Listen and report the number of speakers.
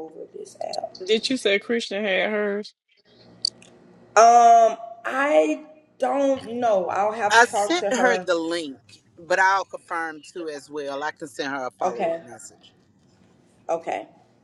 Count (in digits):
3